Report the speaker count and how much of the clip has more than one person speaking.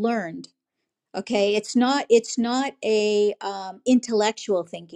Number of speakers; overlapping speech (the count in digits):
1, no overlap